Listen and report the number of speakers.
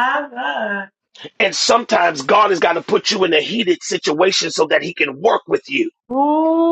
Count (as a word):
two